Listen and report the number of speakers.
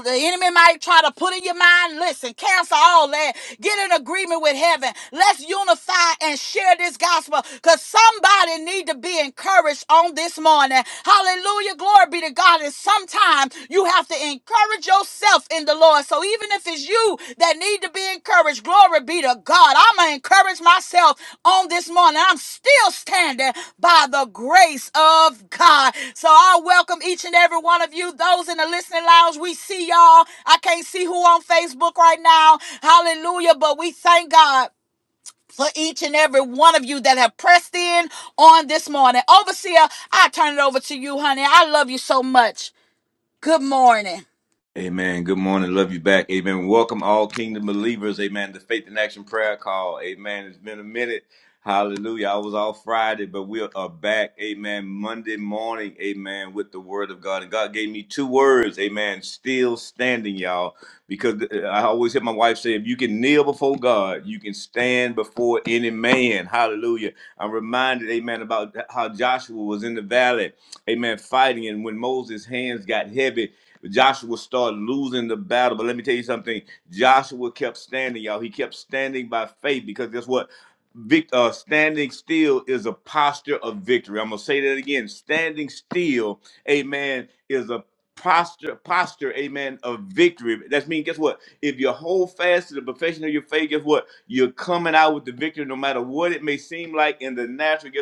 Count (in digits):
2